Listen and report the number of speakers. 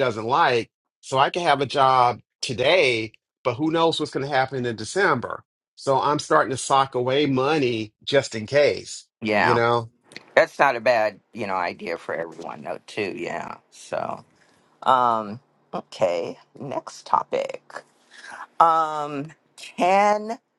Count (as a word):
two